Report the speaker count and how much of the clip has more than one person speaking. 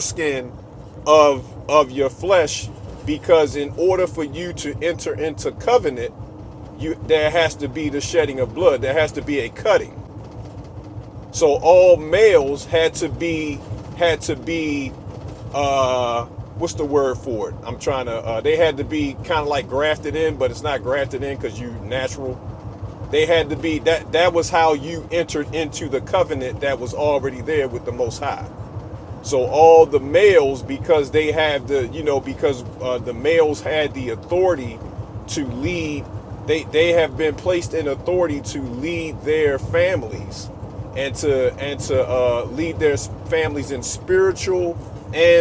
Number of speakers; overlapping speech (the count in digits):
1, no overlap